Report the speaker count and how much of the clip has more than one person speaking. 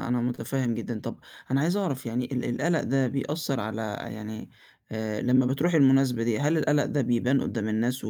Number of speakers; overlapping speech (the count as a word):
one, no overlap